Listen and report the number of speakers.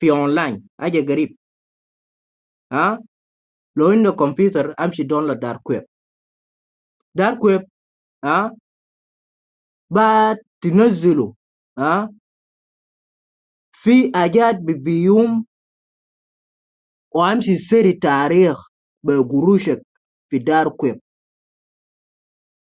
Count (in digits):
1